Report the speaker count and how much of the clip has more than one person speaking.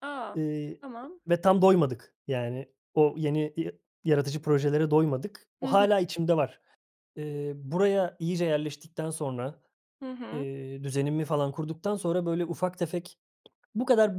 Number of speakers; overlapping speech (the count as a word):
two, about 3%